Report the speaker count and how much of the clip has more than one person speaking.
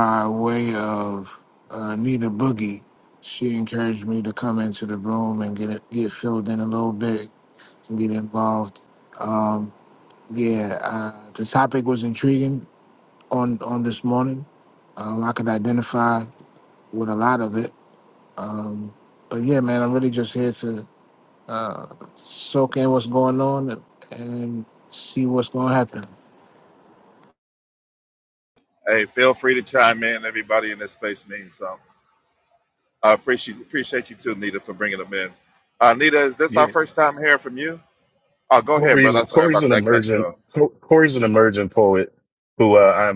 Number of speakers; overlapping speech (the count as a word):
three, about 4%